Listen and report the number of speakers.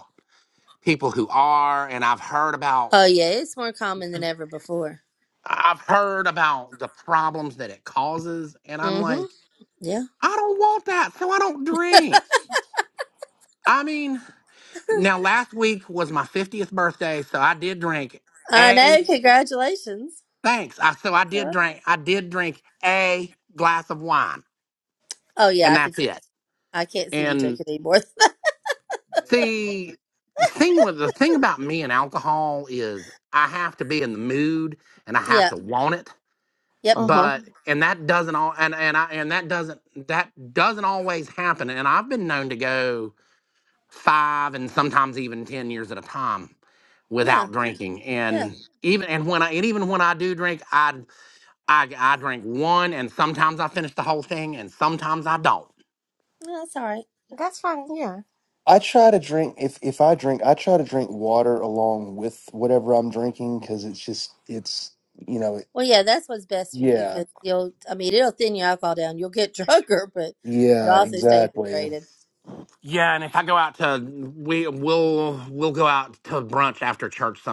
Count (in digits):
4